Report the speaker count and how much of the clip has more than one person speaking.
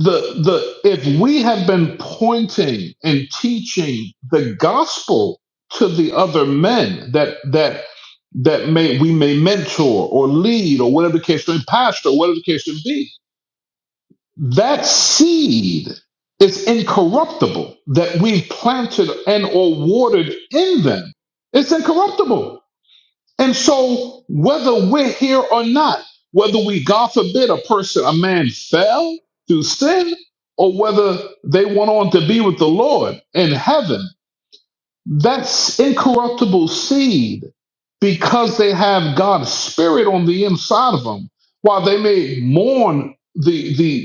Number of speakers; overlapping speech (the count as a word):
one, no overlap